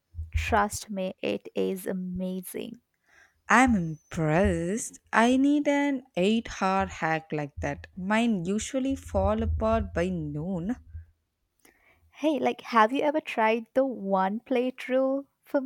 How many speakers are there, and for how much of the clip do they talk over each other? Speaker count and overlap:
two, no overlap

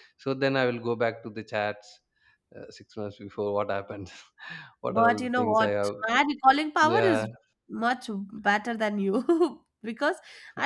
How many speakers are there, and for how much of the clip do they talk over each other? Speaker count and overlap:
two, about 15%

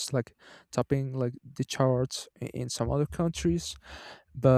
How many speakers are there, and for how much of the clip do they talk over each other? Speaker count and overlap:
one, no overlap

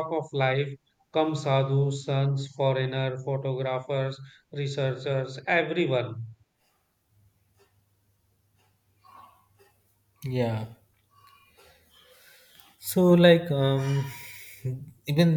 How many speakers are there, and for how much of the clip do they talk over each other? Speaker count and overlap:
two, no overlap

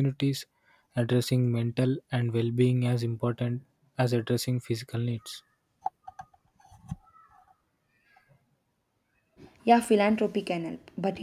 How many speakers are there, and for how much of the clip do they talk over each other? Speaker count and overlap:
two, no overlap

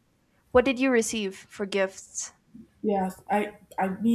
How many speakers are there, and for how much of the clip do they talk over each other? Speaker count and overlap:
two, no overlap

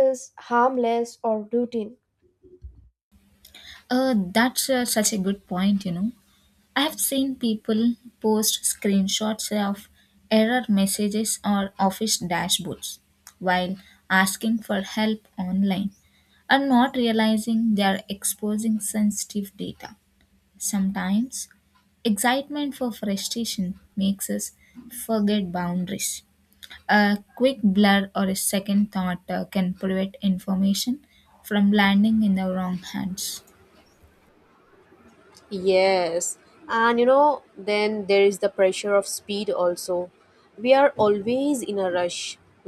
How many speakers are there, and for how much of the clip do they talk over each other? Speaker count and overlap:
three, no overlap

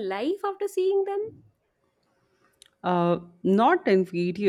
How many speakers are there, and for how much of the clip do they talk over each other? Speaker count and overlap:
two, no overlap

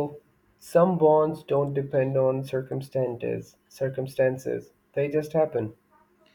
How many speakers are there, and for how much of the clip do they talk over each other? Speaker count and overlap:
one, no overlap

